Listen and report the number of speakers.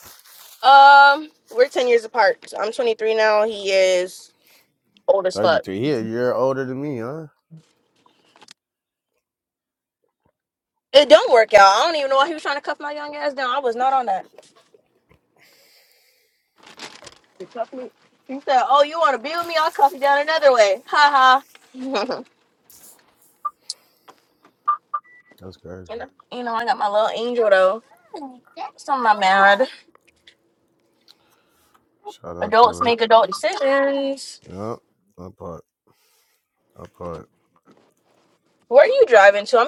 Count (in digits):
2